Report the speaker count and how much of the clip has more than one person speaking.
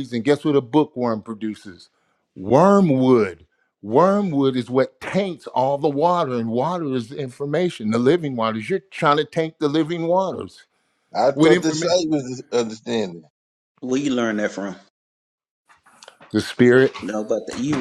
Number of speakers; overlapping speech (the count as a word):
three, about 3%